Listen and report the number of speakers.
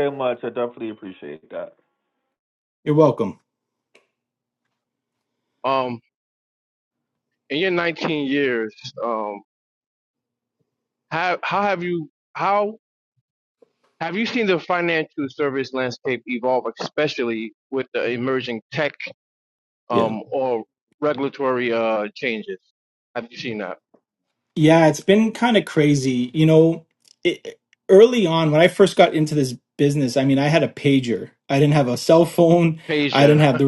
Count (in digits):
3